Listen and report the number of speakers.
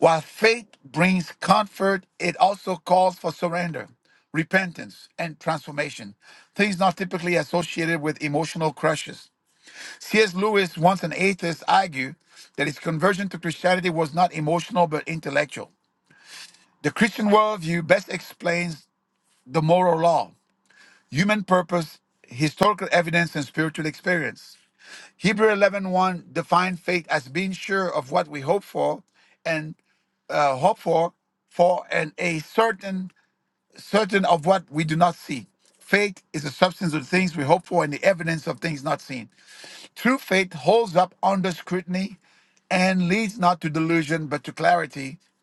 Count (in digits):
1